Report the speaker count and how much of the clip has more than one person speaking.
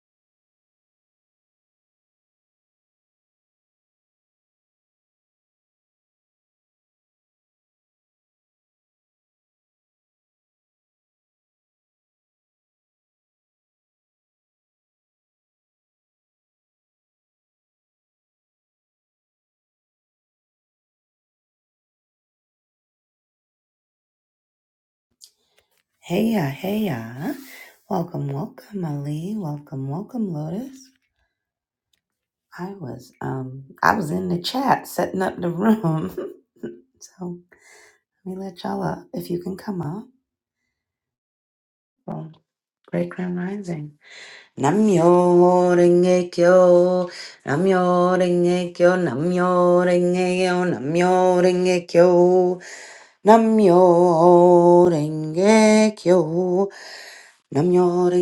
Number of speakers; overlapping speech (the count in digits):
1, no overlap